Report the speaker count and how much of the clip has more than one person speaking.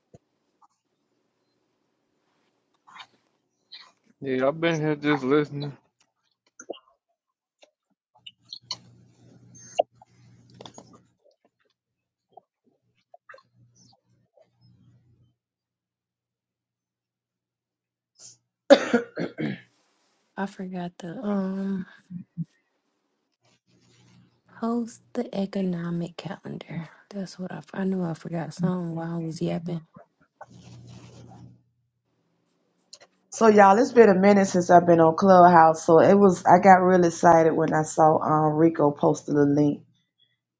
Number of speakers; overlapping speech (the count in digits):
3, no overlap